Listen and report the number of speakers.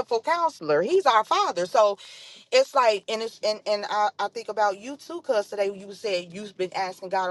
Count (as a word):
one